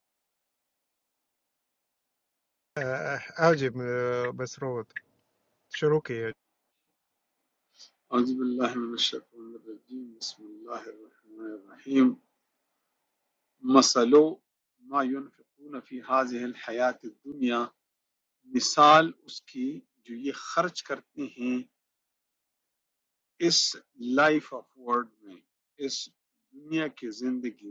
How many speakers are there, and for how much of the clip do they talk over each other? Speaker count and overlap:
2, no overlap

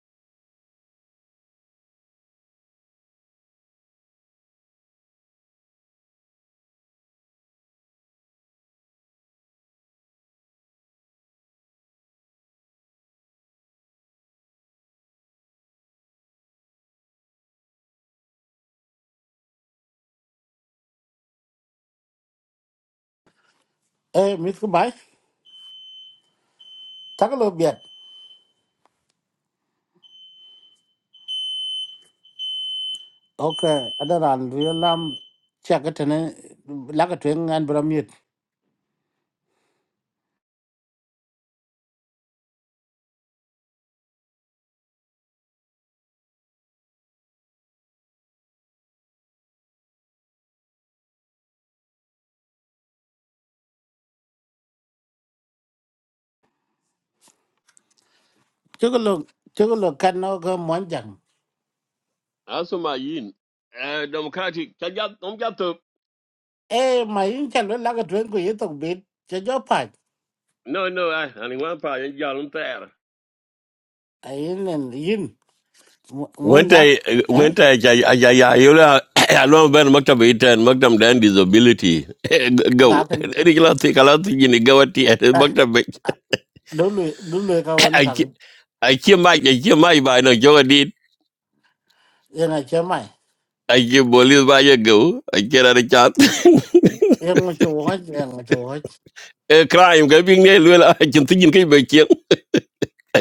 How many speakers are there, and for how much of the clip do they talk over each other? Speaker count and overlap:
2, about 1%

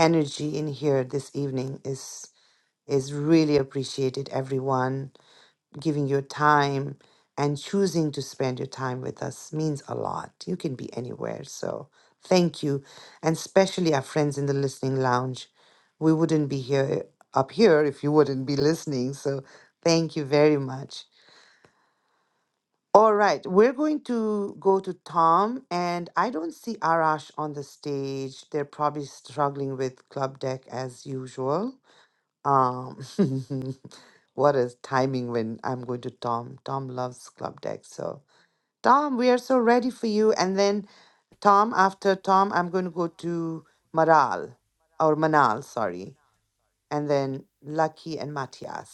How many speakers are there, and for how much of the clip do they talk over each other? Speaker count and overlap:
1, no overlap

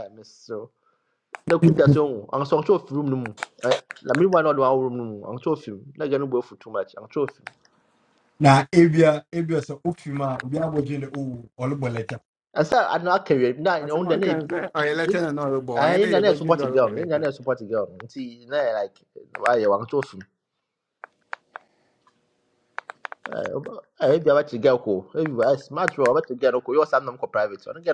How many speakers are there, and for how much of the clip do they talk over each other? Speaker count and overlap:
3, about 7%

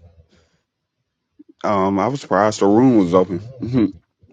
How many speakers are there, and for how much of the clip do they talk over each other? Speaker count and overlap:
1, no overlap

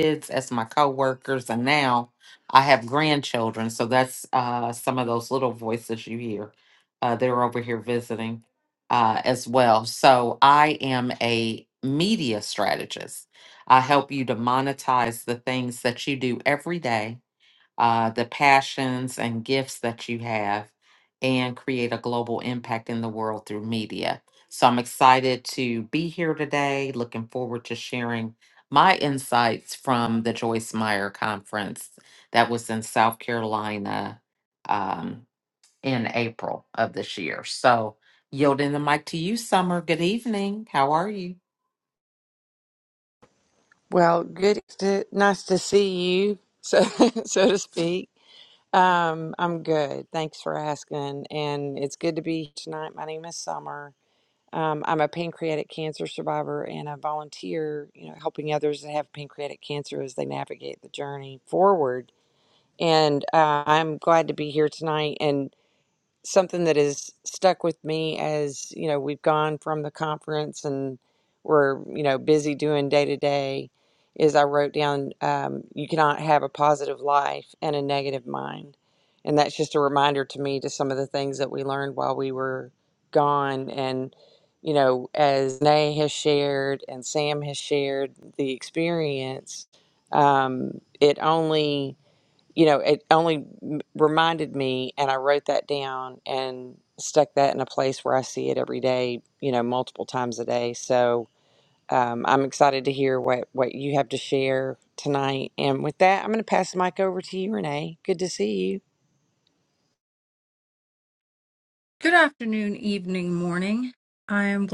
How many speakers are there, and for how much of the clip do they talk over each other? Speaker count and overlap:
3, no overlap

